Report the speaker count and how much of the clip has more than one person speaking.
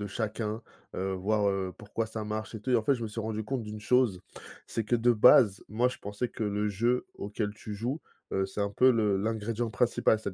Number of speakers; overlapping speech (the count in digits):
1, no overlap